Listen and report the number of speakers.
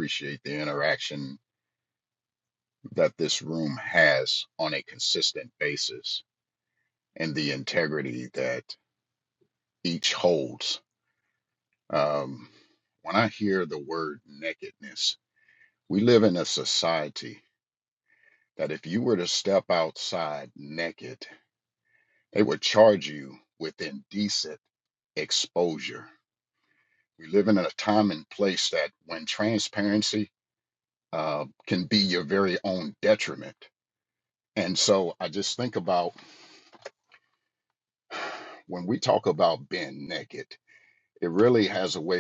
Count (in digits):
1